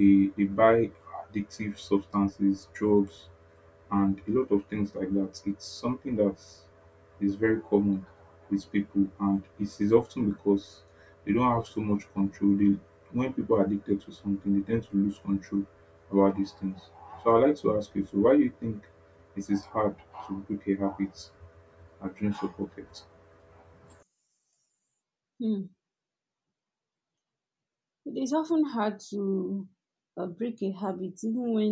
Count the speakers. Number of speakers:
2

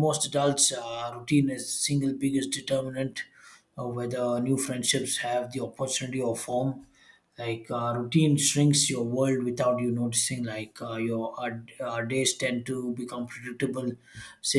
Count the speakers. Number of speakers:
1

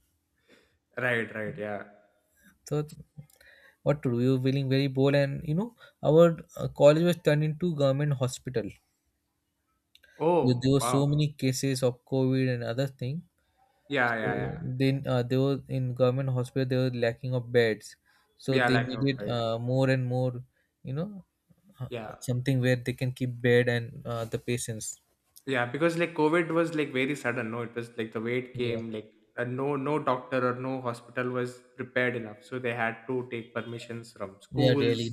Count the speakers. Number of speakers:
2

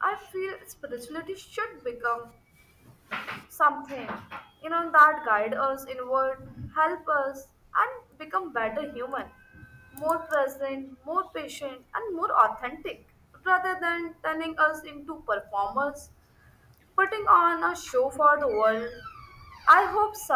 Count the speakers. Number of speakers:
1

